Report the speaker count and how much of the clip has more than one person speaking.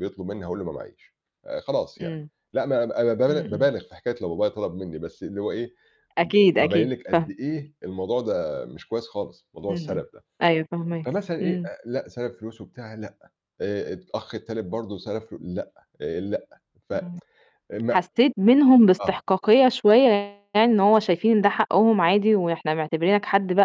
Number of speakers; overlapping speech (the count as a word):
two, about 8%